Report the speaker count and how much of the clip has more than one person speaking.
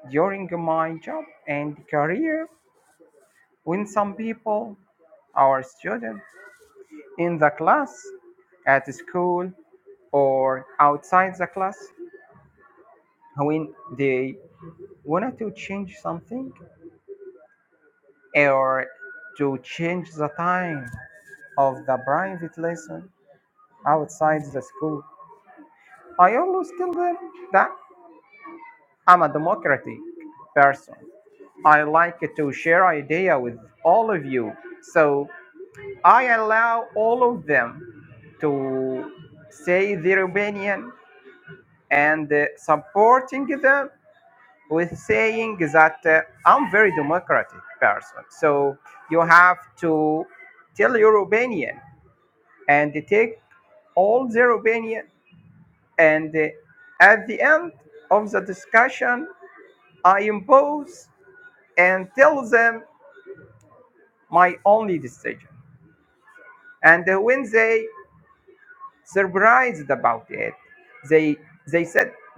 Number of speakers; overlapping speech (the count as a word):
one, no overlap